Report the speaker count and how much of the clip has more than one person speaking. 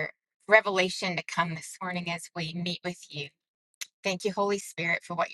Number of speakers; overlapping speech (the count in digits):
1, no overlap